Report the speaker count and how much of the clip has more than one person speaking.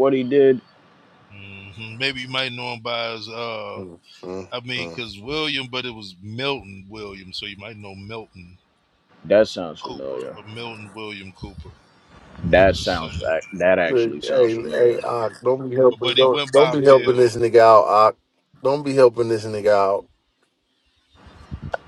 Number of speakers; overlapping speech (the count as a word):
three, about 19%